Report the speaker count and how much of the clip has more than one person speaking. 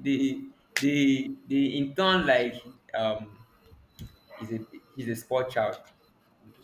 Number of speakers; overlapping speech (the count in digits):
1, no overlap